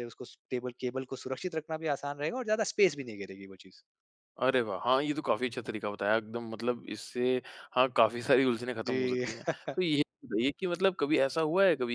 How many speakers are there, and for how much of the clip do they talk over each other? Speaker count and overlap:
two, about 4%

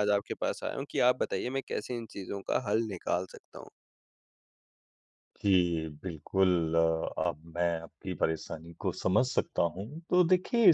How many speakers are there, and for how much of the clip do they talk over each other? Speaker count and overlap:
two, no overlap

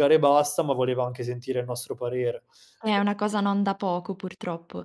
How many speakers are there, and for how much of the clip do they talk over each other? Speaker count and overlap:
two, no overlap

